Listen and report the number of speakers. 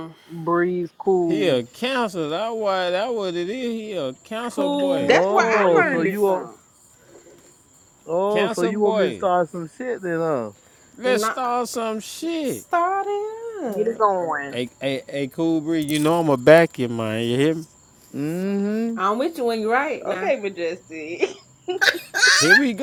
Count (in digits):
5